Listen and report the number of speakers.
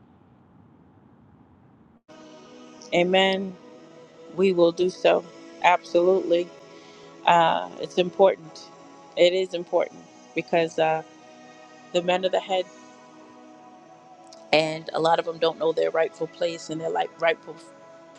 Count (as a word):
one